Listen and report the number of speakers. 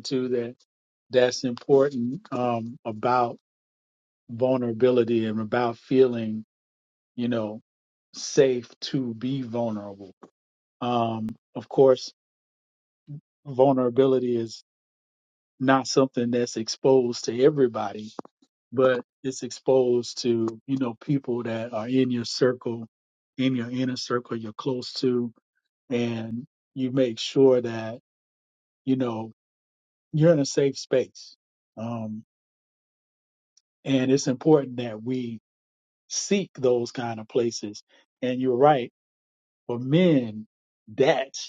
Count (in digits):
1